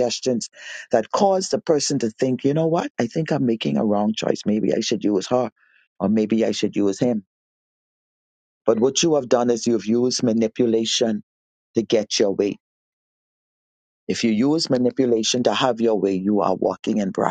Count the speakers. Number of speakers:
1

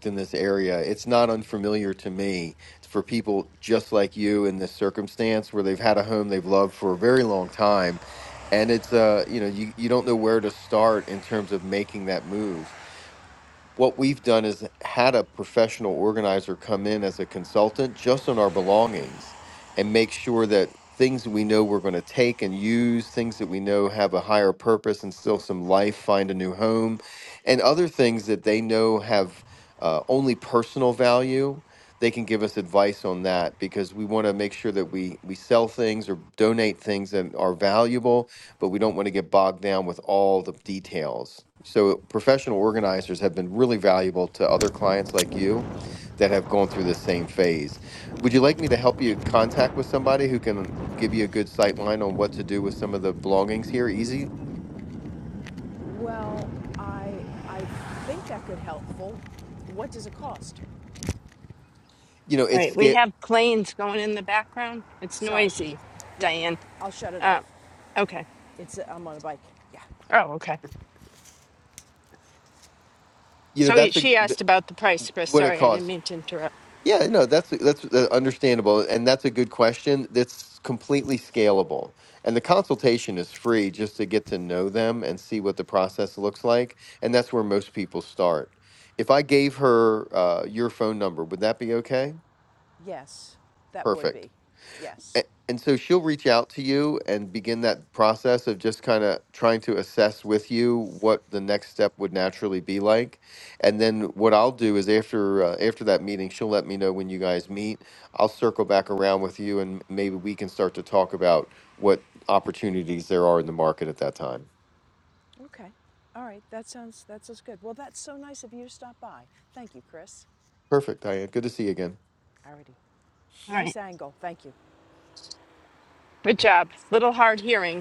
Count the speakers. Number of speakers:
3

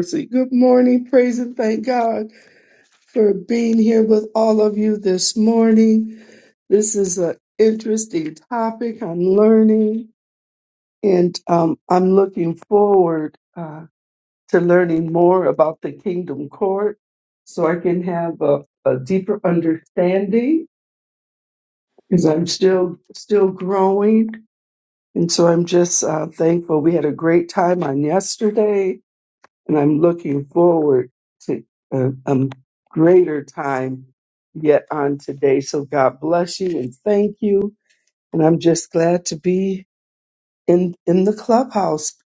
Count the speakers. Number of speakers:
1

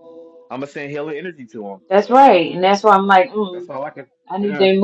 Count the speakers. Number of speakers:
2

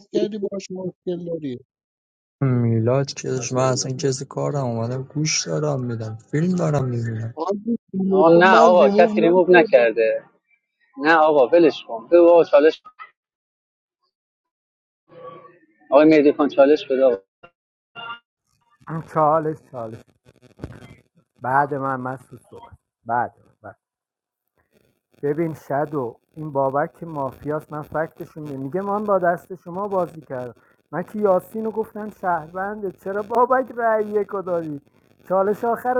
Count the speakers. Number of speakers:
4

